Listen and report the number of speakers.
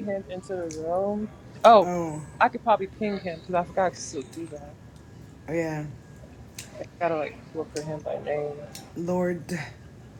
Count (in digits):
2